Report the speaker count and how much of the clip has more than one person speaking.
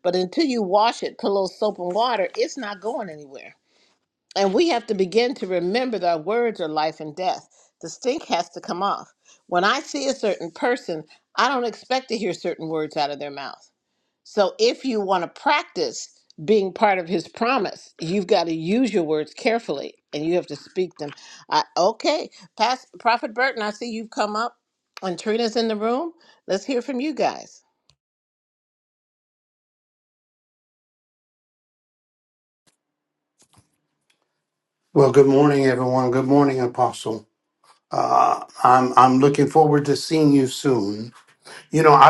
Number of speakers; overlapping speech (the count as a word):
two, no overlap